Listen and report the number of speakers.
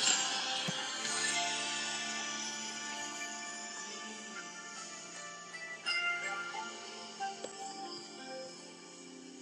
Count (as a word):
zero